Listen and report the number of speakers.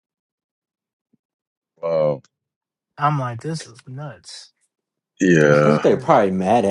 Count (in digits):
3